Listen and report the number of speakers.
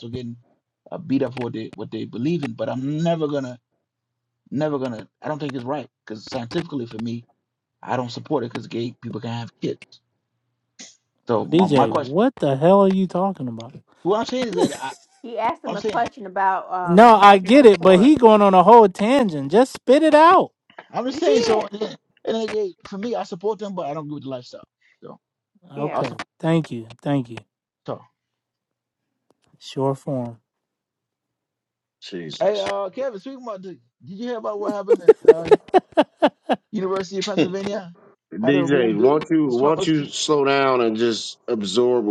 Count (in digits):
4